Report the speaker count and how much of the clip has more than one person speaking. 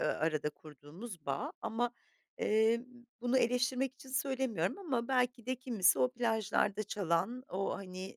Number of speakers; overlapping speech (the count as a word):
one, no overlap